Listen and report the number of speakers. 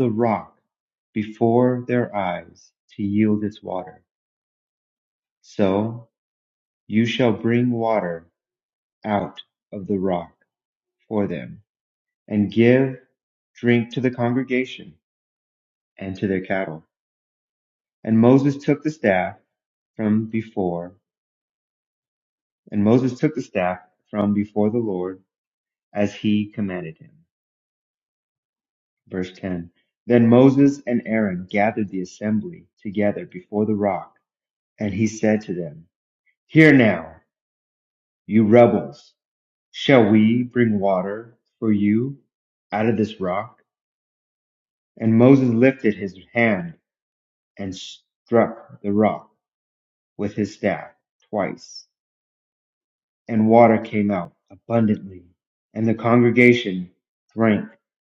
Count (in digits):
1